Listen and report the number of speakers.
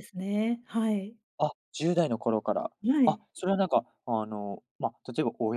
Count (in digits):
2